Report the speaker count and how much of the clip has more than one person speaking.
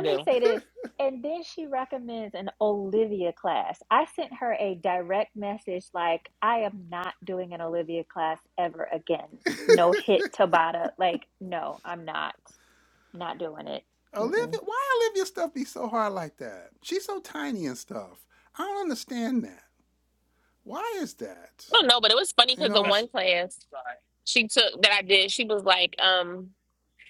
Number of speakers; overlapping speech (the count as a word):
three, about 4%